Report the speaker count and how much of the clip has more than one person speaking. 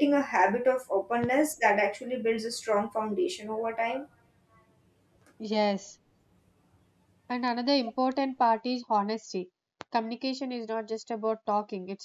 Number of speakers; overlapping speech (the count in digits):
2, no overlap